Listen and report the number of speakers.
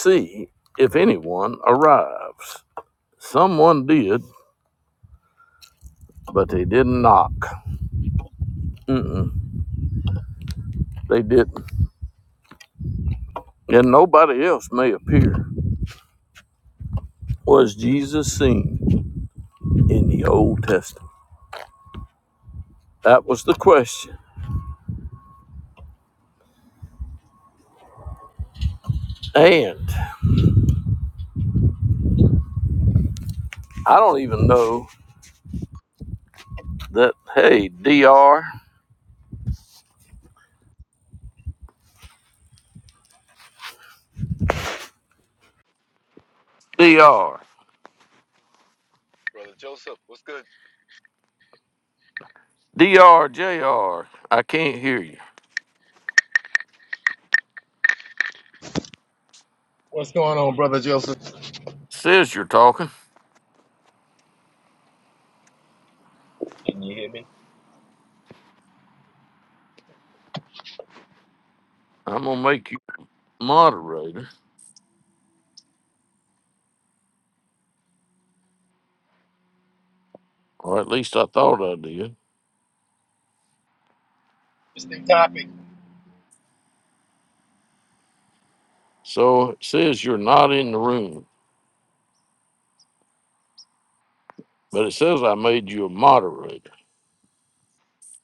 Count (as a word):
two